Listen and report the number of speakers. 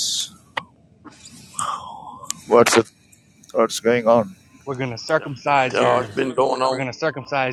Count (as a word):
three